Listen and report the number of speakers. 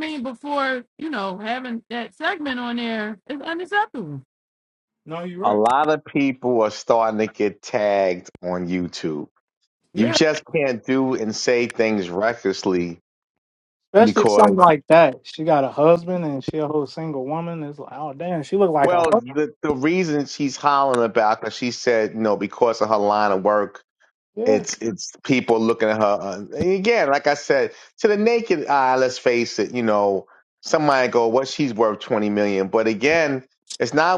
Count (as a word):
three